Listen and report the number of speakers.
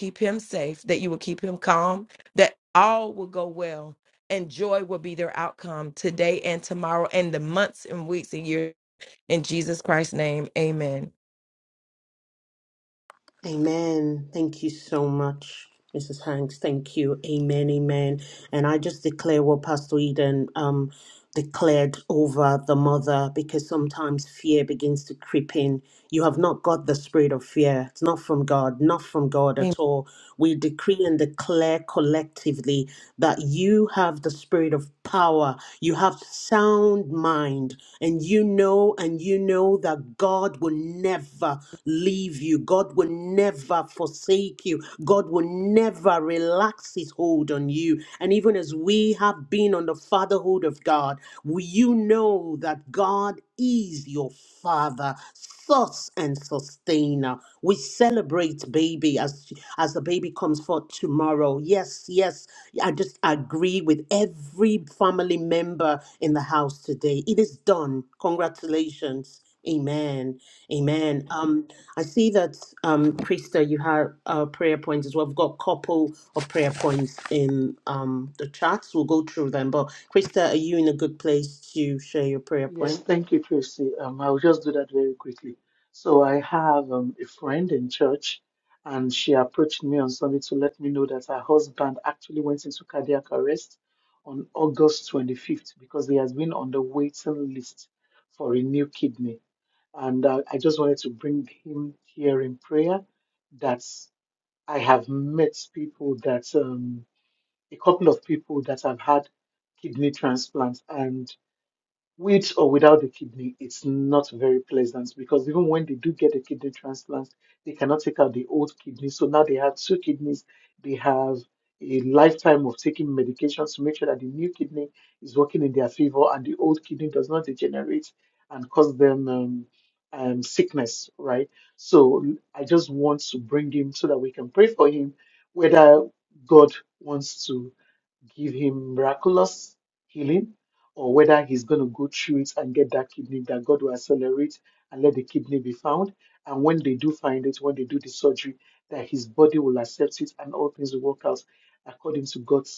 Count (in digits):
3